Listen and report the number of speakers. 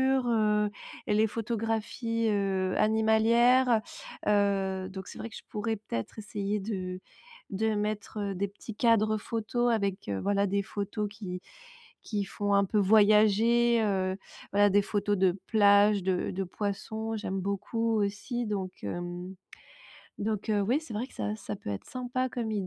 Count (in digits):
1